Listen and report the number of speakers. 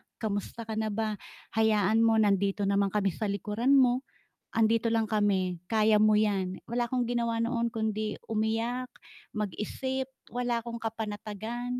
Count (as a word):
one